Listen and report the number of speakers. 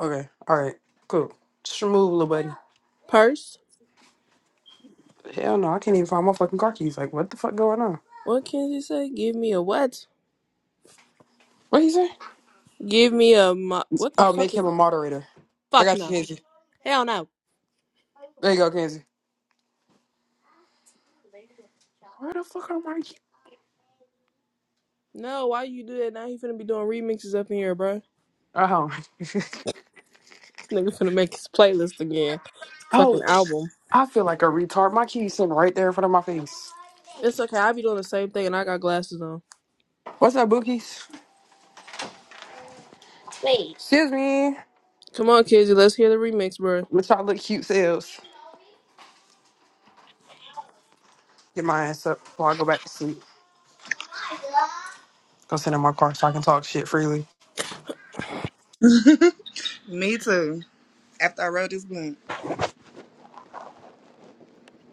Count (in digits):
3